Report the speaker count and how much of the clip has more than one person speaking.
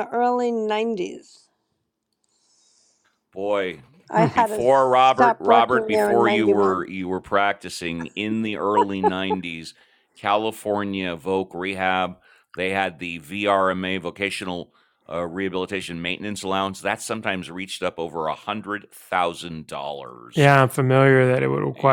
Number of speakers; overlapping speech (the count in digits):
3, about 11%